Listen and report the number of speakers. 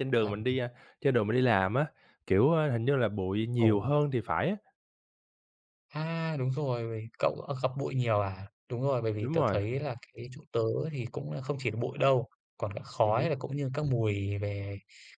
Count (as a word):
two